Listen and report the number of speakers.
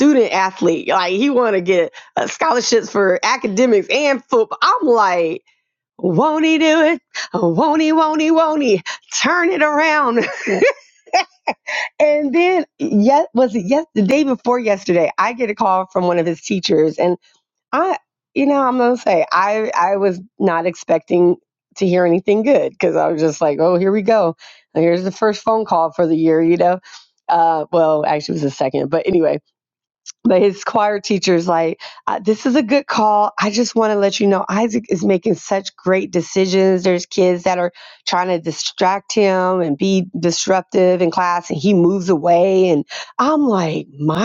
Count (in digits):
1